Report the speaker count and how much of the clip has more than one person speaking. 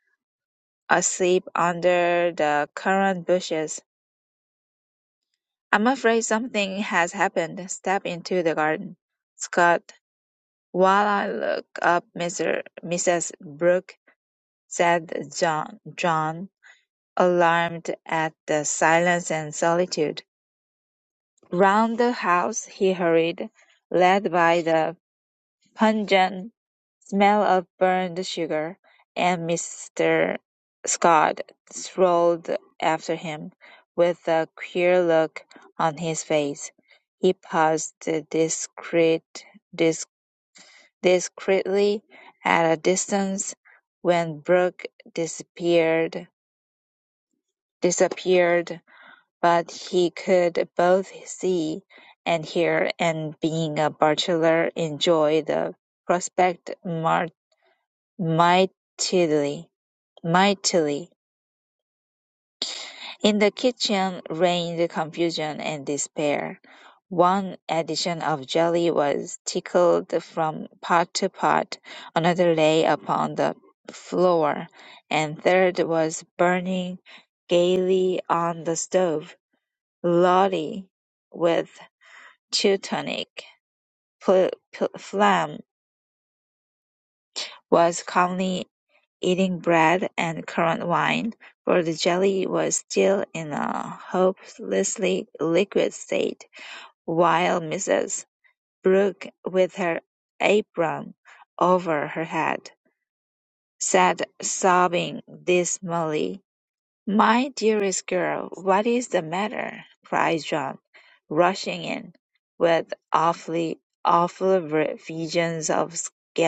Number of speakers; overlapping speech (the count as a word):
one, no overlap